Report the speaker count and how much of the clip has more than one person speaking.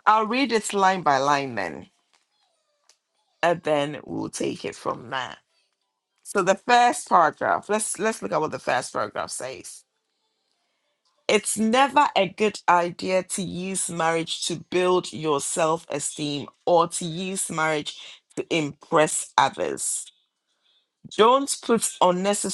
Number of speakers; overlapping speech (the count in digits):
1, no overlap